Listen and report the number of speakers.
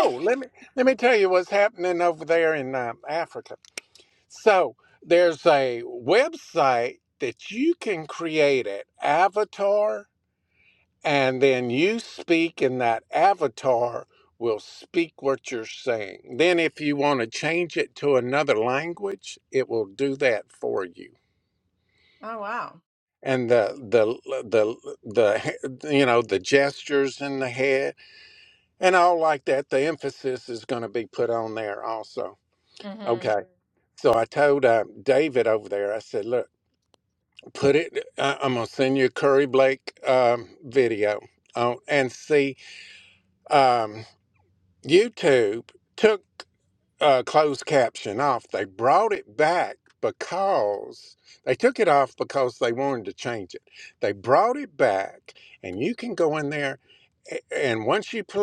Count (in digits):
2